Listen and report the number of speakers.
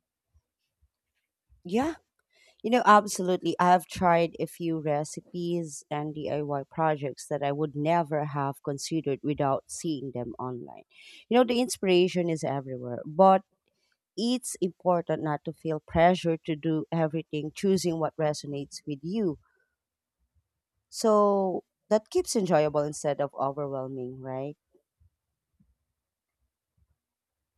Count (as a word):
one